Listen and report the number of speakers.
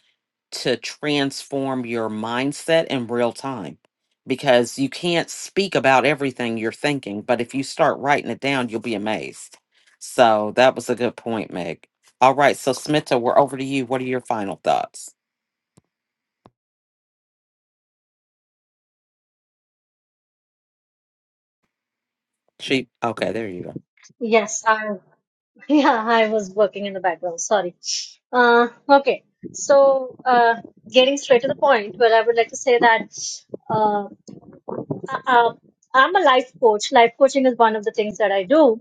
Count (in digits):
2